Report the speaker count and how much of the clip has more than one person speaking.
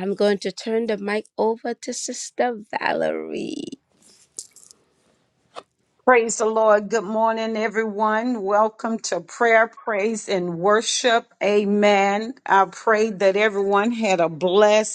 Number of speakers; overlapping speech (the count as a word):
two, no overlap